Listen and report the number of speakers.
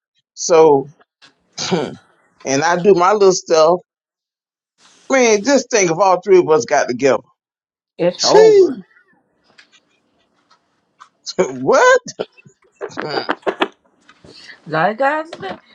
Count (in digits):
2